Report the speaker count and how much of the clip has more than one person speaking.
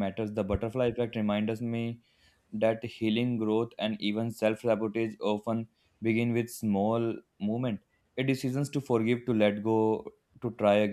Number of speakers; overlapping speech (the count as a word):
one, no overlap